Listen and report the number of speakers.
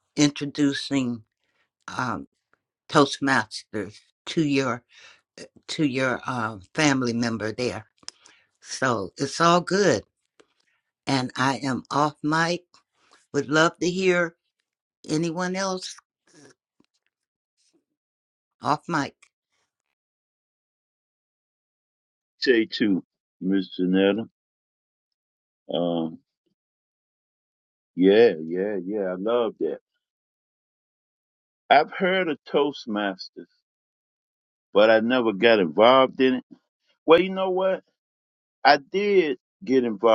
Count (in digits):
2